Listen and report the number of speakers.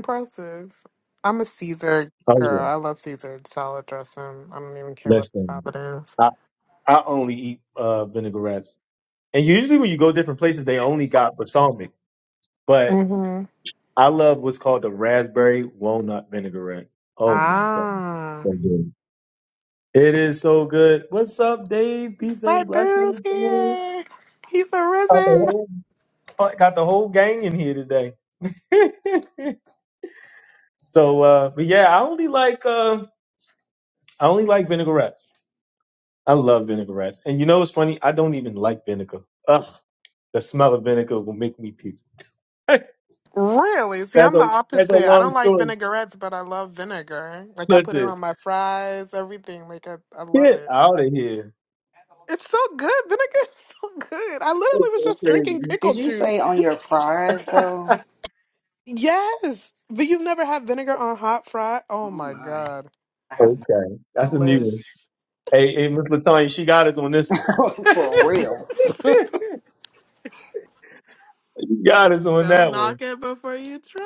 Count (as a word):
three